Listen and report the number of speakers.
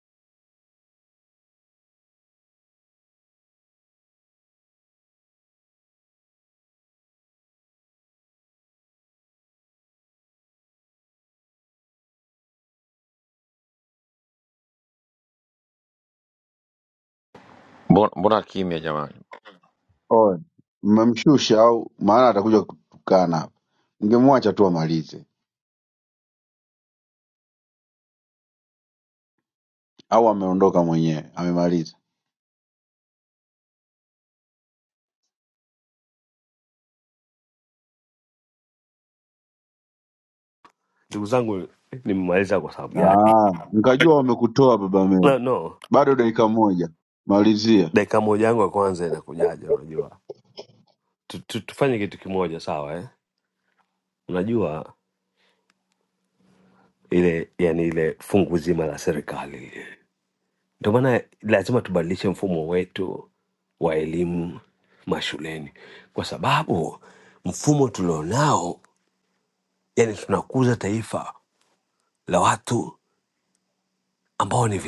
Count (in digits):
3